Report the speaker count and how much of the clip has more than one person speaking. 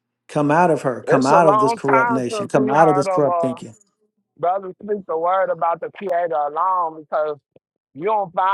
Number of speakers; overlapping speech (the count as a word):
two, about 30%